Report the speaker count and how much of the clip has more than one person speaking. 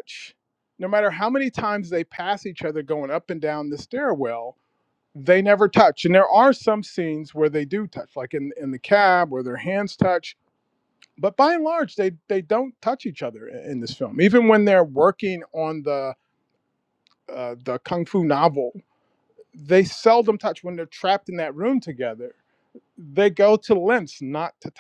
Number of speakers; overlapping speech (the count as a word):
one, no overlap